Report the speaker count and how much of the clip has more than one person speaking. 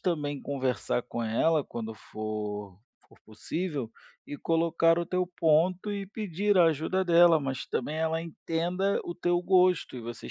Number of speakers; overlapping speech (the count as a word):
one, no overlap